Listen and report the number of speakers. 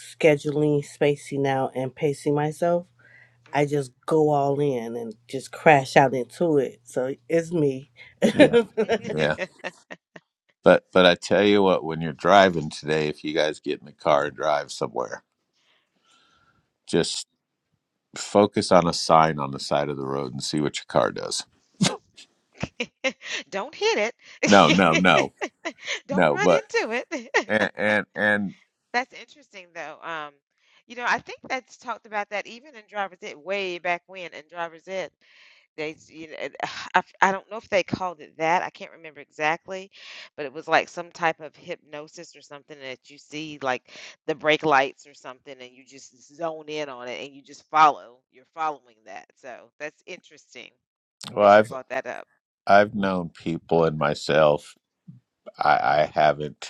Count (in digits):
3